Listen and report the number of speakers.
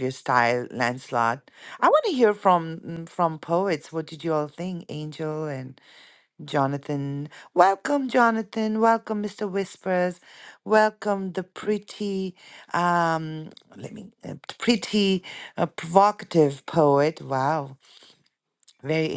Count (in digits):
1